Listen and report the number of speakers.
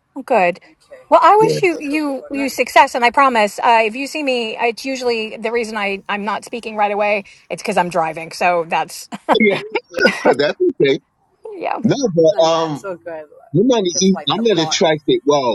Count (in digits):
3